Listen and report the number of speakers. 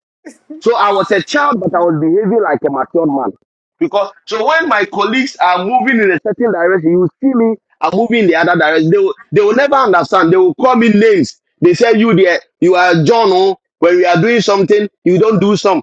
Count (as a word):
one